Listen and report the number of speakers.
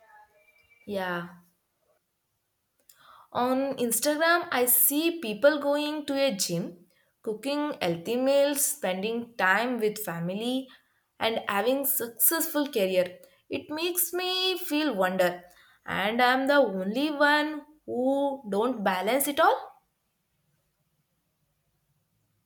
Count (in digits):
1